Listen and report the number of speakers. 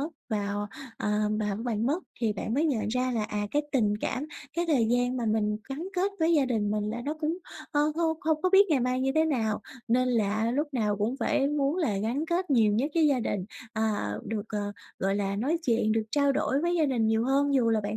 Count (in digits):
1